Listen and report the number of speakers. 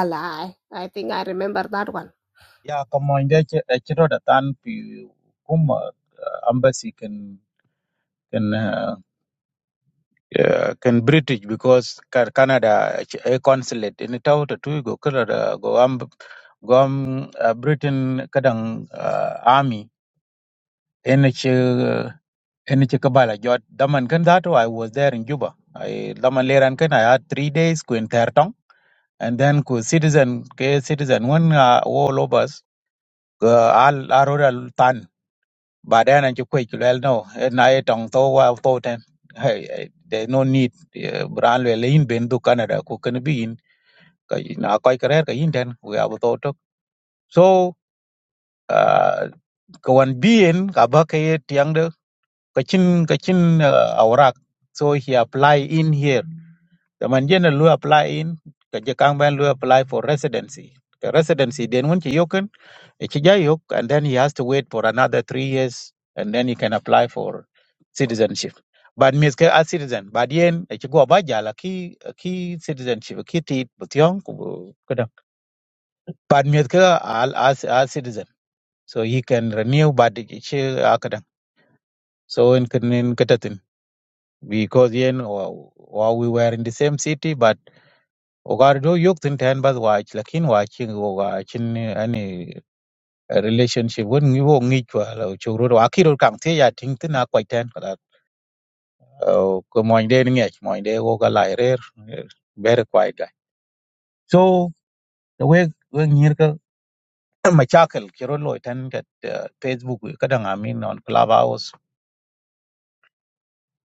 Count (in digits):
2